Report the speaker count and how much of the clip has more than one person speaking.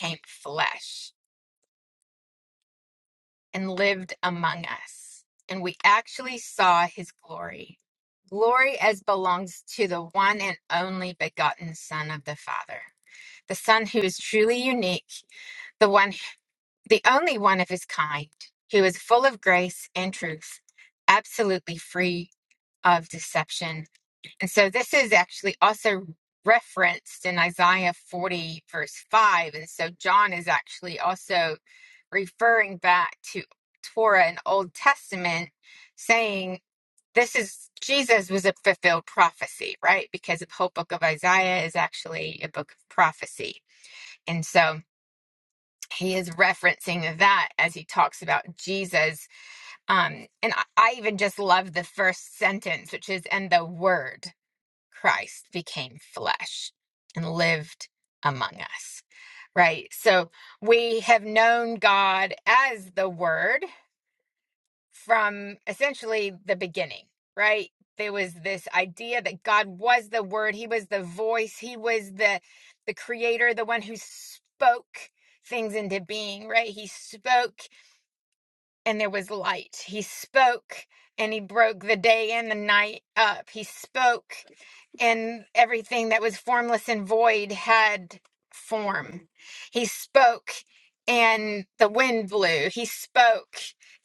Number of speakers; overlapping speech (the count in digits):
1, no overlap